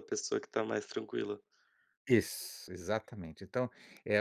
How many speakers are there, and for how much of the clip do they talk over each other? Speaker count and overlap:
two, no overlap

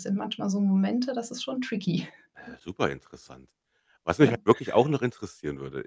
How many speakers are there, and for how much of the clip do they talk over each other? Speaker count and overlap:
two, no overlap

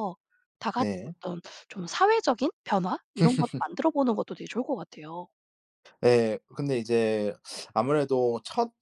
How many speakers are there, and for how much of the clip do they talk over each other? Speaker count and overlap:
two, about 4%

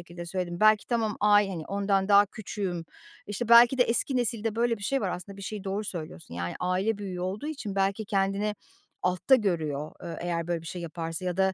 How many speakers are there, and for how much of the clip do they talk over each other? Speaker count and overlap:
one, no overlap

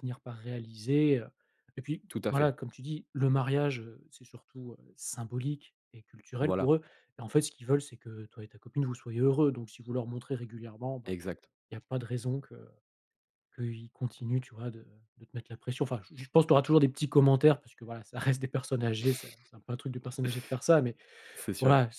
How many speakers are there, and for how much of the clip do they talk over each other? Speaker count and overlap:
two, about 4%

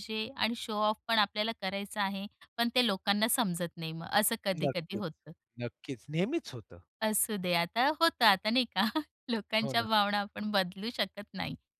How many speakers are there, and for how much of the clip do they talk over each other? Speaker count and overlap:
two, about 6%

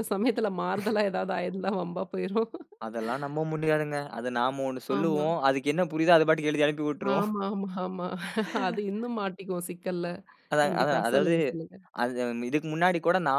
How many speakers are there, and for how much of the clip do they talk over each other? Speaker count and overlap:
two, about 10%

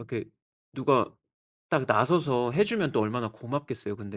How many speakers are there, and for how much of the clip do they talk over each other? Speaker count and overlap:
one, no overlap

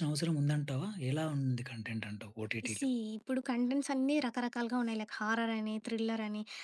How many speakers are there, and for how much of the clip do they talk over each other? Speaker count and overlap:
two, about 1%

